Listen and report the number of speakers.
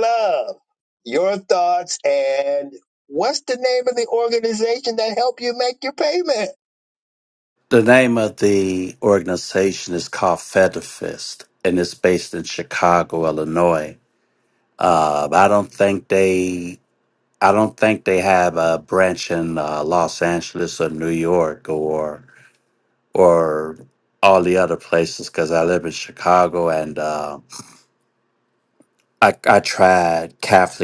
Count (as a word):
two